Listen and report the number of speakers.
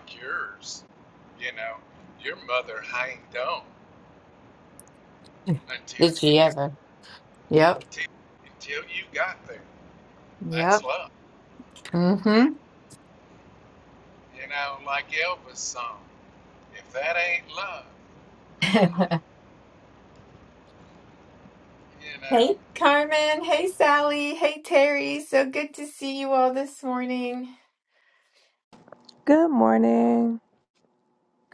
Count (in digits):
3